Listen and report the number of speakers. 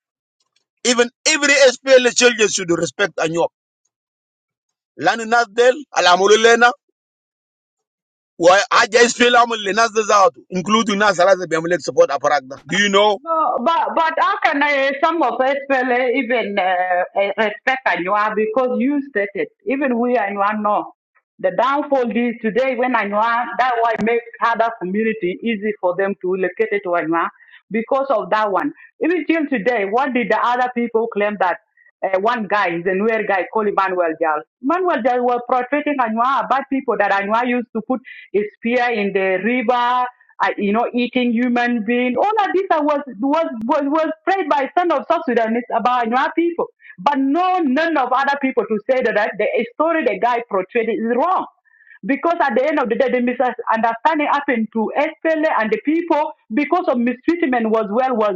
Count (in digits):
2